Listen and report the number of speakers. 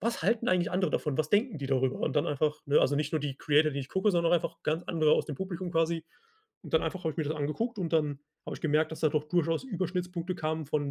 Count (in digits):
1